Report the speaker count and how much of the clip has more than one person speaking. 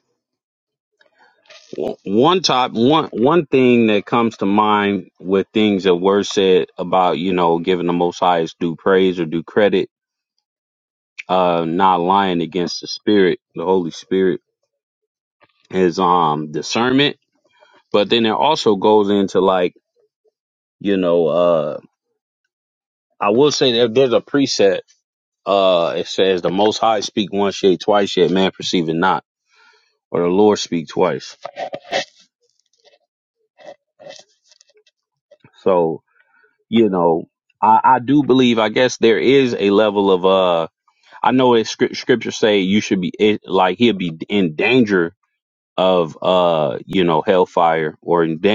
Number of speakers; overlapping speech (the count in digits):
1, no overlap